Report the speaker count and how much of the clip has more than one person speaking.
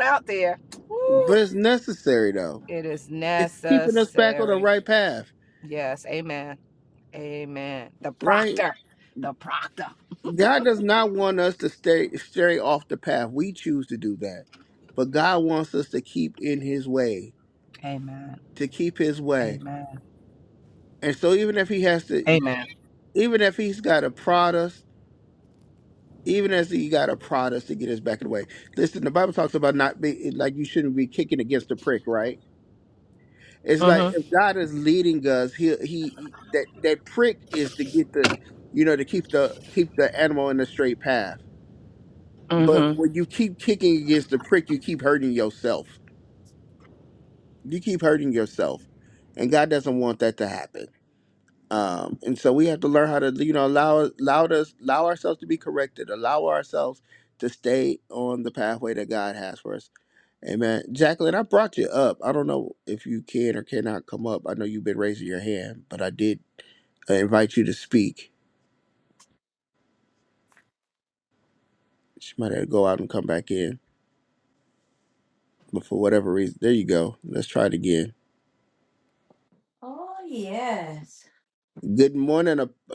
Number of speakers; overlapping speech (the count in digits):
3, about 2%